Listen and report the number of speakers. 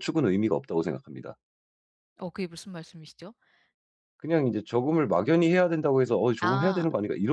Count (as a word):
two